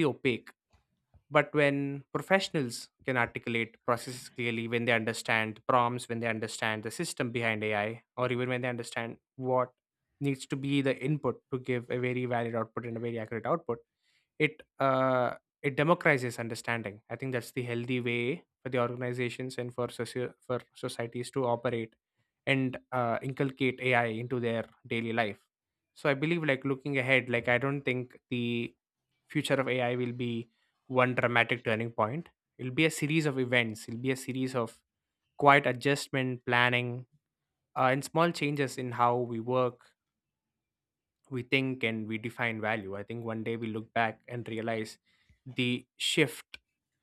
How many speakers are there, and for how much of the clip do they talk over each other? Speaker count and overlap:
1, no overlap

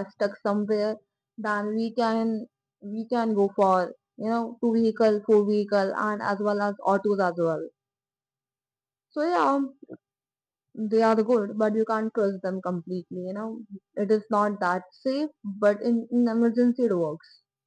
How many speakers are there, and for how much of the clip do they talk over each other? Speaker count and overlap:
1, no overlap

